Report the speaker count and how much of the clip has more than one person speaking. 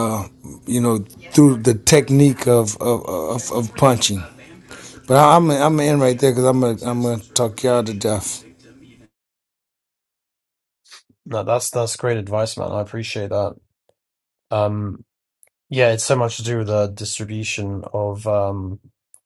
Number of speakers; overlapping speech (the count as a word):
two, no overlap